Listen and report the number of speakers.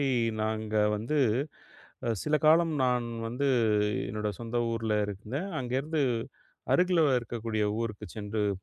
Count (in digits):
1